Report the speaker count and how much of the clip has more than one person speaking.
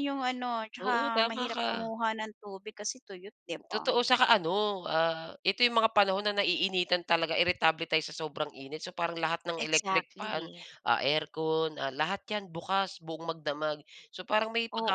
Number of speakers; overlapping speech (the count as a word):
two, about 16%